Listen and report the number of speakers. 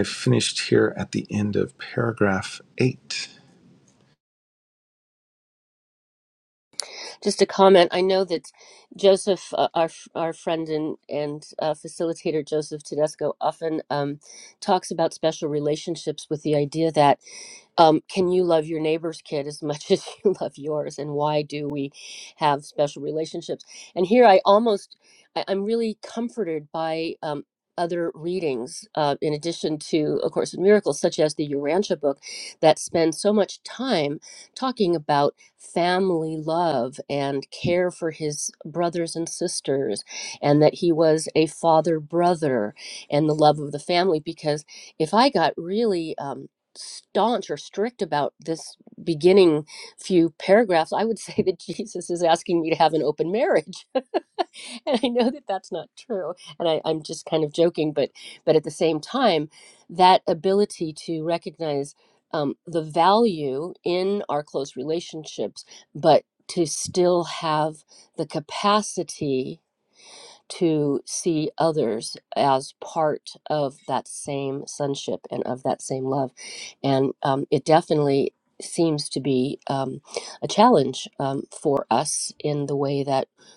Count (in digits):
2